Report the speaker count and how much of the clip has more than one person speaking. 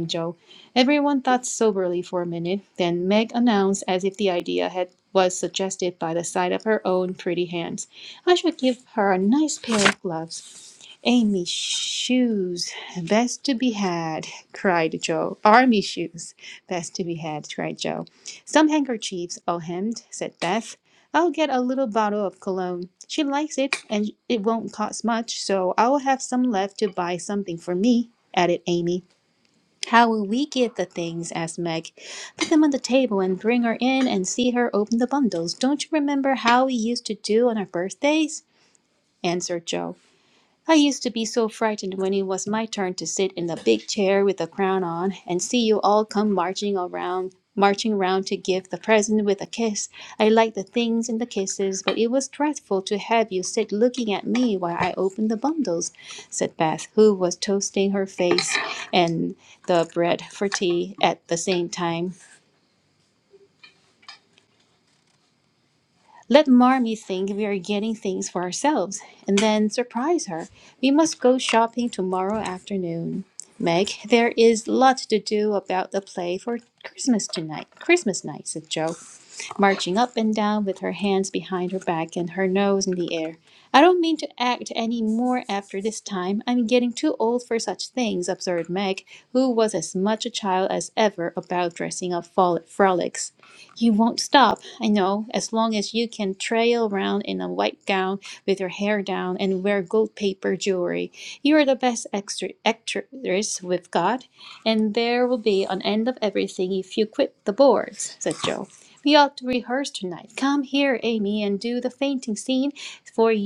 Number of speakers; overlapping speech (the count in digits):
1, no overlap